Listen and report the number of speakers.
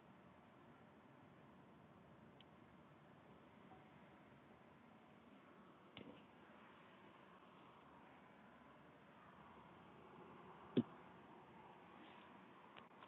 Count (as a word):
zero